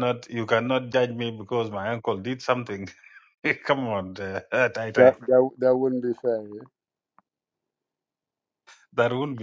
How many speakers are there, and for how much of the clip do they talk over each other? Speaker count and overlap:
2, about 2%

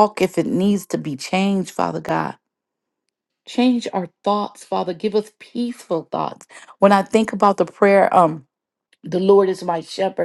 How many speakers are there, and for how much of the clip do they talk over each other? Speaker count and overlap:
1, no overlap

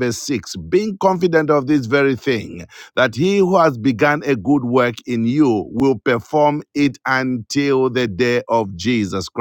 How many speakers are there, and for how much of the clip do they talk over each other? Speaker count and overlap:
1, no overlap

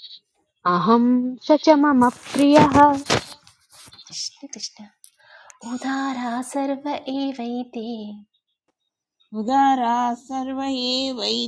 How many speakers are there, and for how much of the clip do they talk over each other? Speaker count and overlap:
3, no overlap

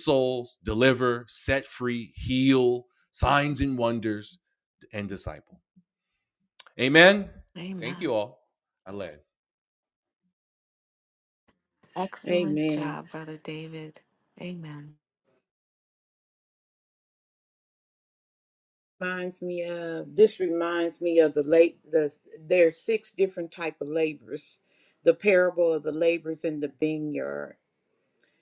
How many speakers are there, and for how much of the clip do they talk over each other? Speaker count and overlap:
3, about 4%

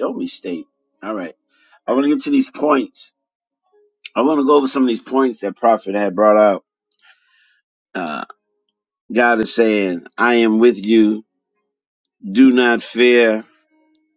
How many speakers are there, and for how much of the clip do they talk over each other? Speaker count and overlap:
1, no overlap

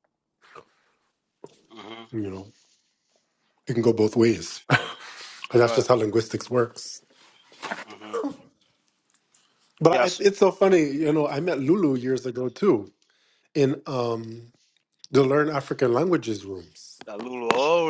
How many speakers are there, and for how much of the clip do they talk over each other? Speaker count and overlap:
2, about 3%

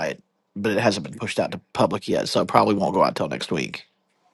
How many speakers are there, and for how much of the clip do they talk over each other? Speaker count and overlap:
1, no overlap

